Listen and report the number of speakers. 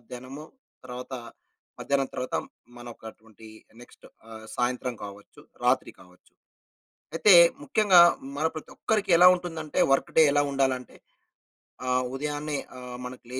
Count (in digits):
1